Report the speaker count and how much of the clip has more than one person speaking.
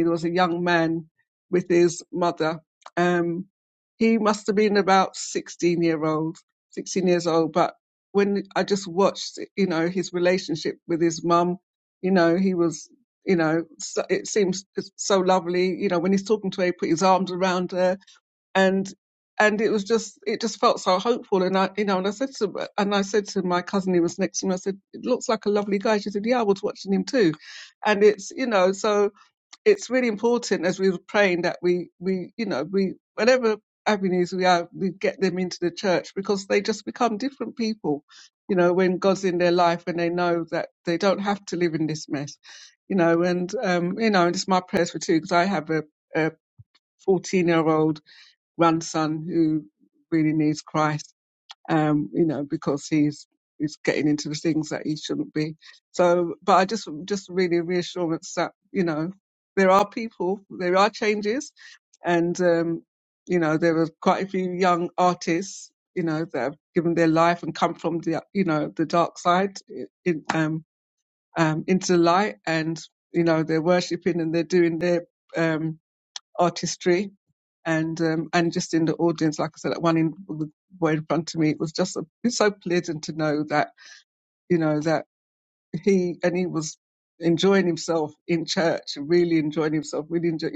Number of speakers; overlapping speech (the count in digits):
1, no overlap